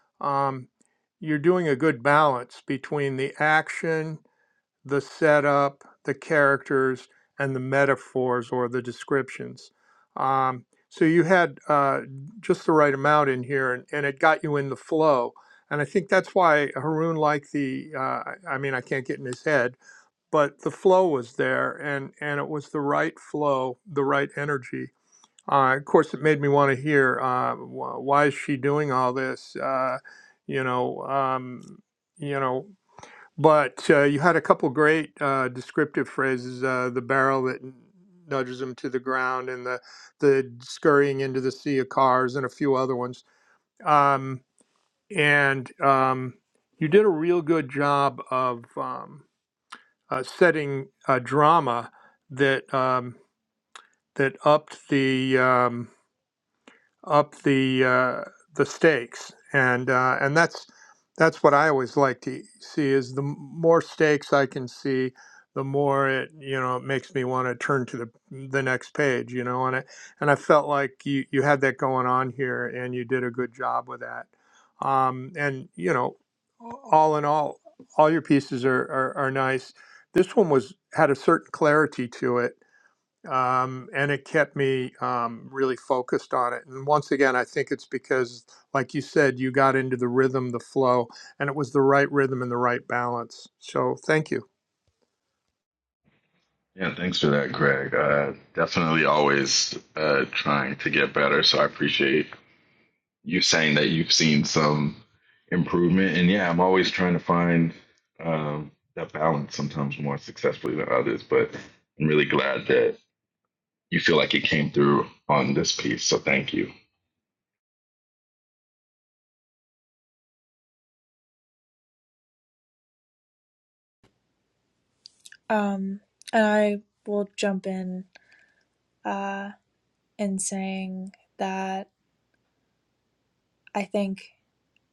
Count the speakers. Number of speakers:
3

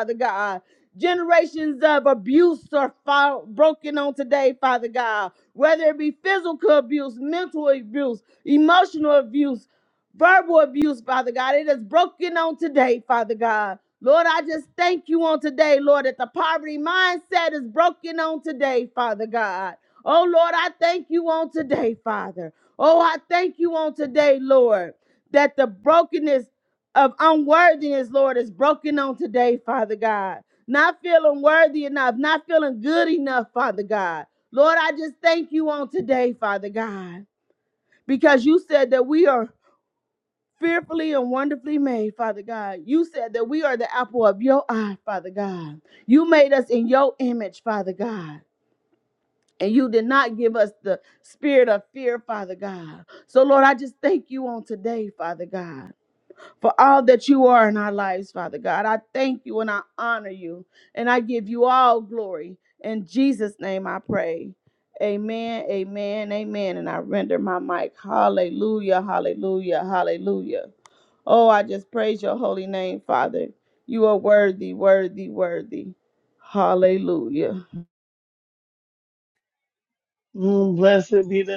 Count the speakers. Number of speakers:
2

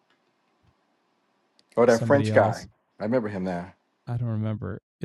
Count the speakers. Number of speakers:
2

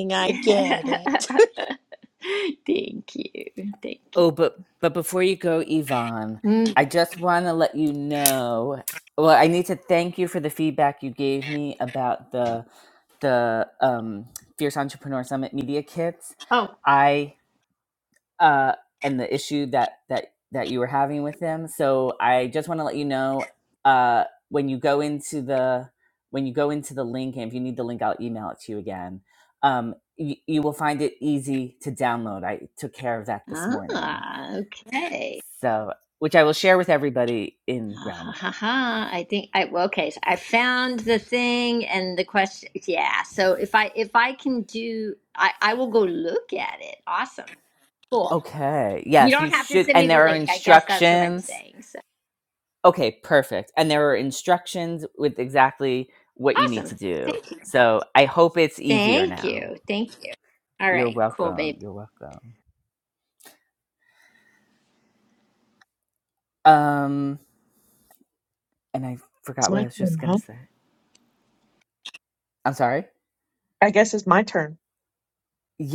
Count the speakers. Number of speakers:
4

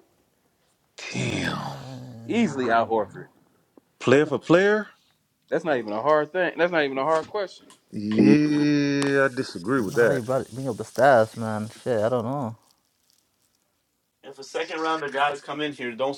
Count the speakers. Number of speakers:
4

